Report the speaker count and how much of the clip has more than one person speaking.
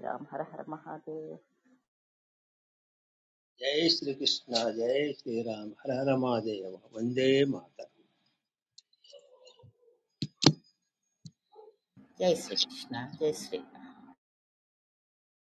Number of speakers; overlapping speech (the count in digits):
3, no overlap